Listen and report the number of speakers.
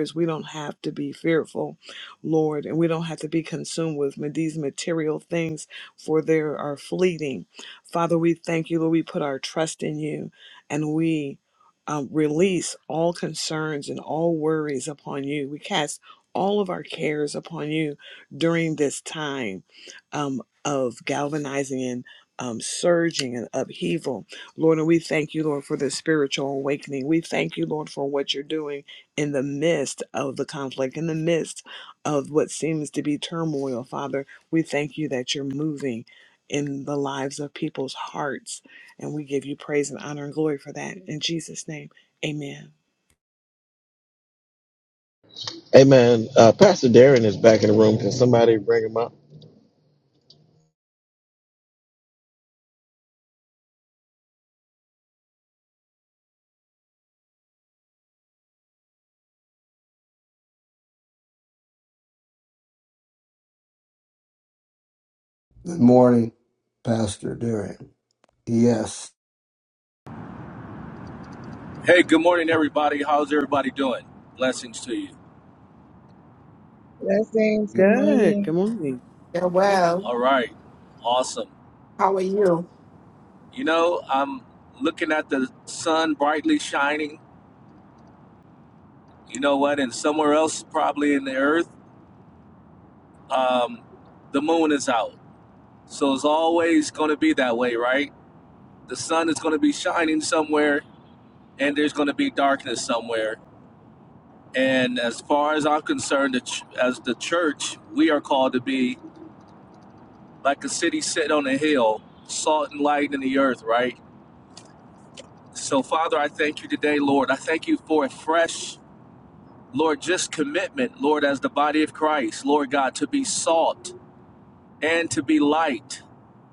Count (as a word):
six